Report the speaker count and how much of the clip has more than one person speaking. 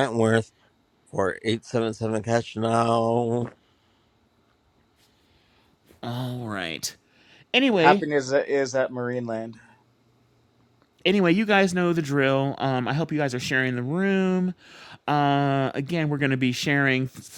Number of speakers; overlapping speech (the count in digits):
3, about 1%